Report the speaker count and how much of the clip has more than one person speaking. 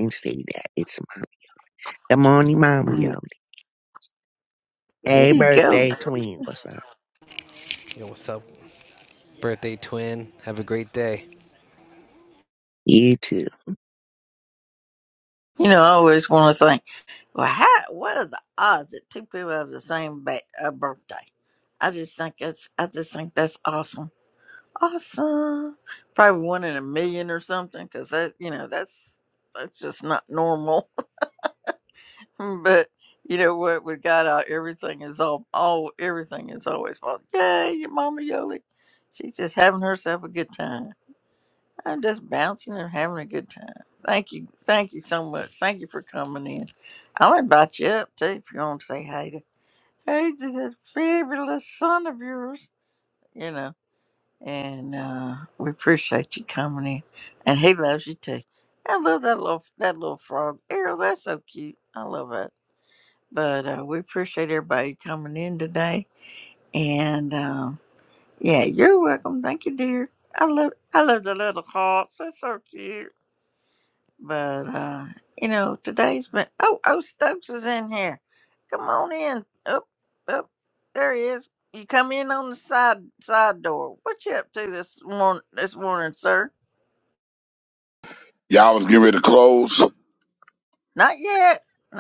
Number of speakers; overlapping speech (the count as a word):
four, about 1%